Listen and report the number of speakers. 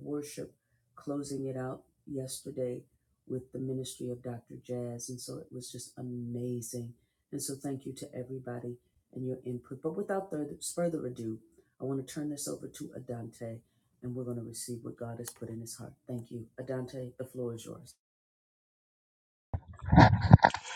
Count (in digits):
1